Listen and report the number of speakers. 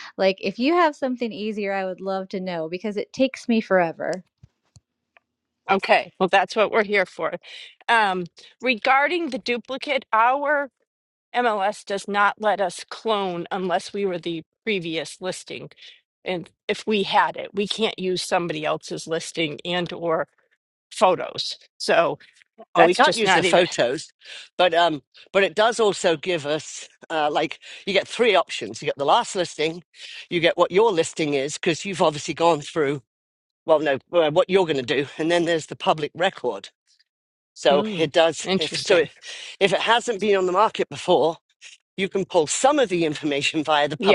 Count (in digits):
3